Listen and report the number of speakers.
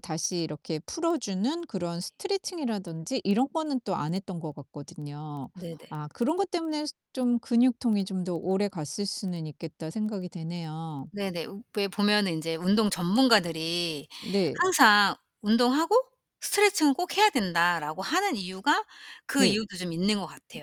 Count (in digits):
2